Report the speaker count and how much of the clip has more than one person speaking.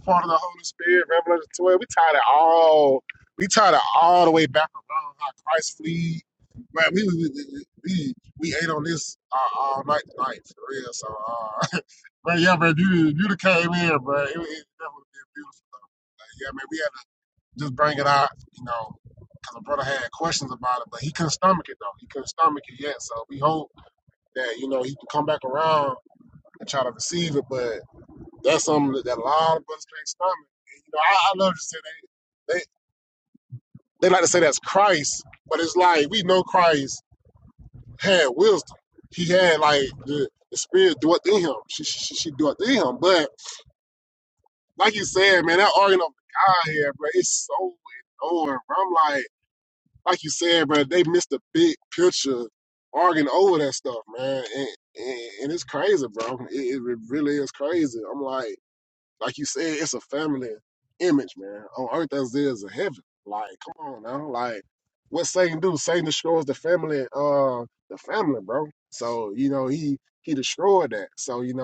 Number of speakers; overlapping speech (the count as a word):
one, no overlap